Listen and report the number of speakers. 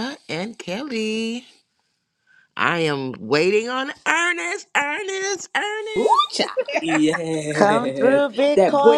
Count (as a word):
three